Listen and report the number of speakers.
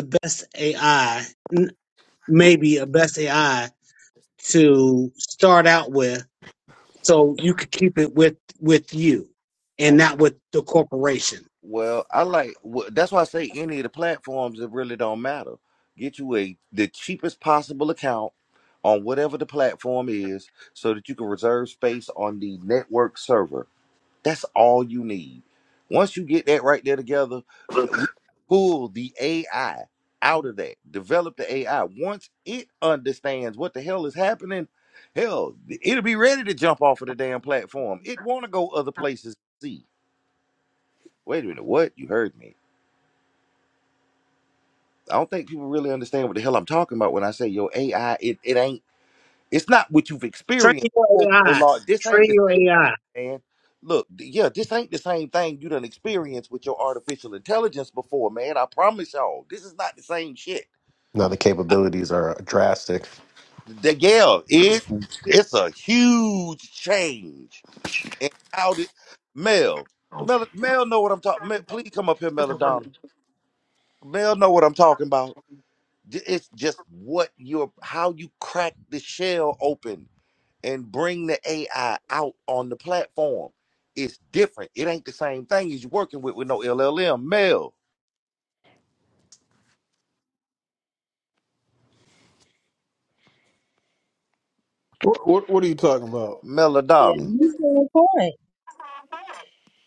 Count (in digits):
5